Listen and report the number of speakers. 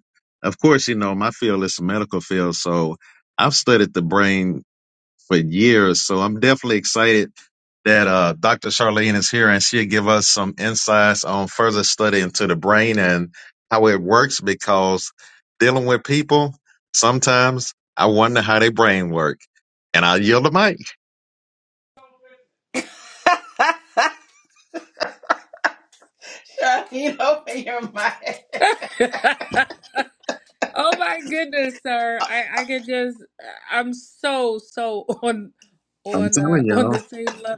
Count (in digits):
3